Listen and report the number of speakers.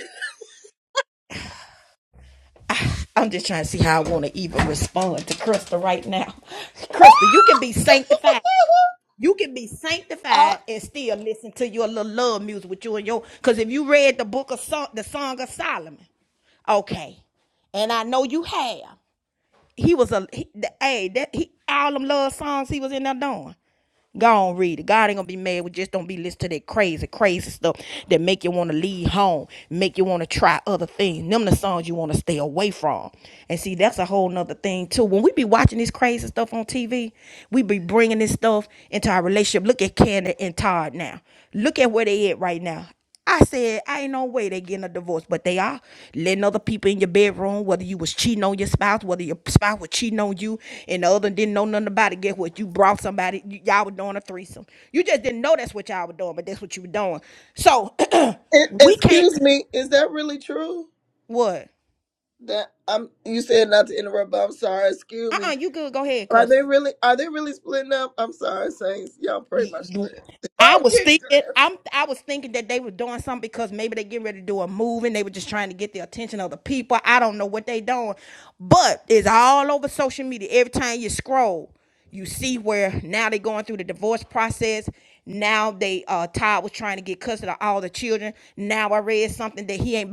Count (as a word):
two